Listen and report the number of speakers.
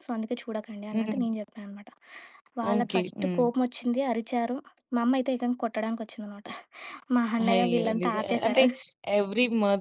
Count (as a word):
two